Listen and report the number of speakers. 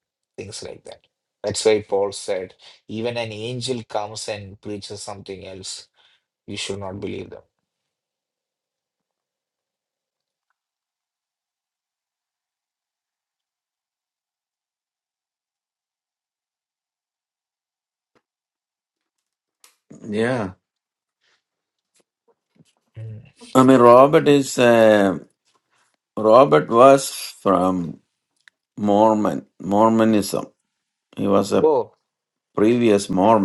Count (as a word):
two